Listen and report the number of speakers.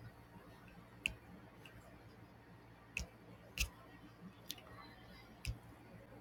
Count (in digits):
0